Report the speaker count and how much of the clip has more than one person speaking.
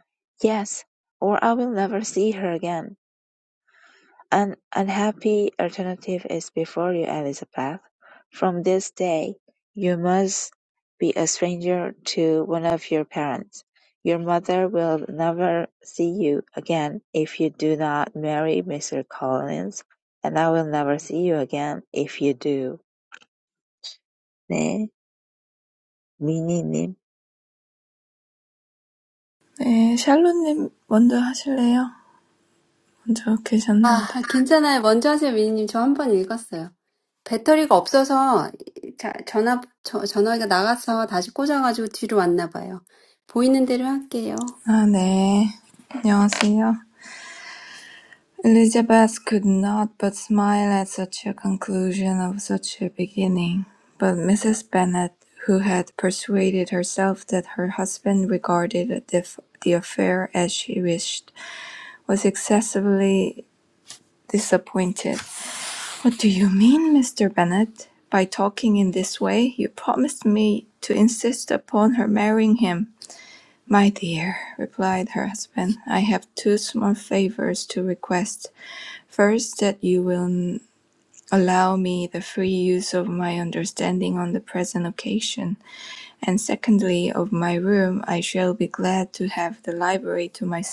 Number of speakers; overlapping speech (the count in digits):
3, under 1%